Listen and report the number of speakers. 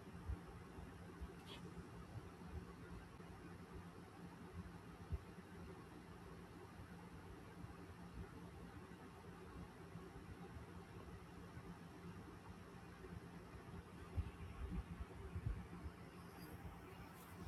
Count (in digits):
0